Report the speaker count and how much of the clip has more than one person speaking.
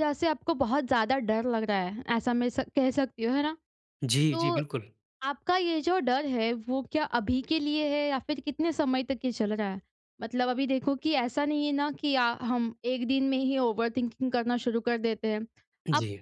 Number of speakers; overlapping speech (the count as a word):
two, about 3%